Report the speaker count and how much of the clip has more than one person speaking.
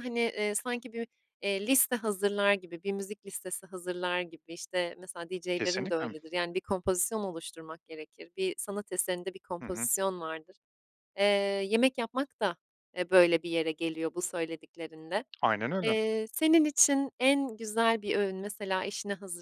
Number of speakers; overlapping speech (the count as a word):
two, about 5%